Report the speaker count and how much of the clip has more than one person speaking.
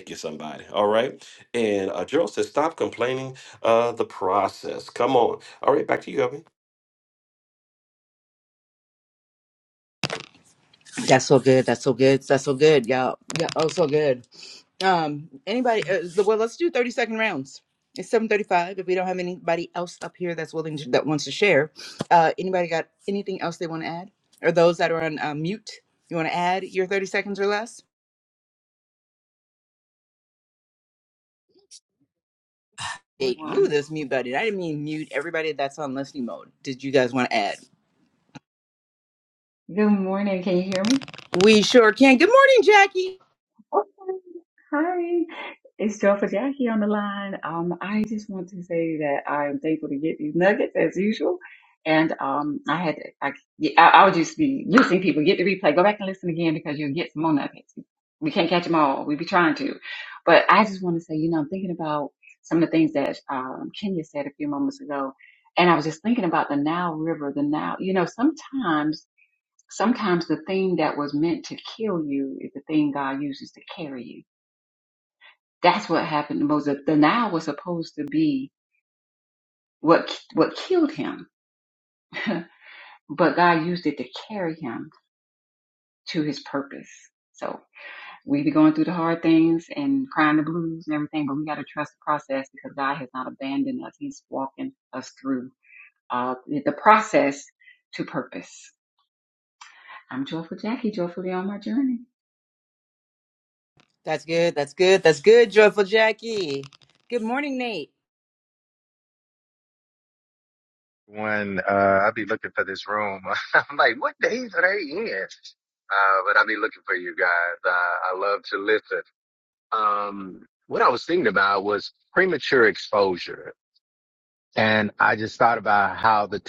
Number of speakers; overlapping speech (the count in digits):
4, under 1%